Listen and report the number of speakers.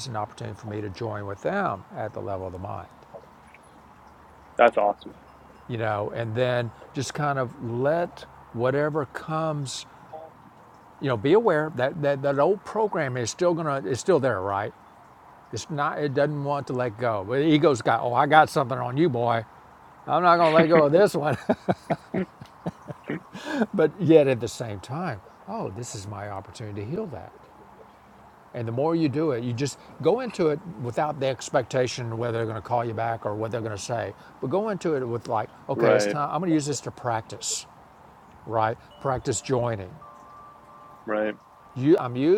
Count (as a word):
two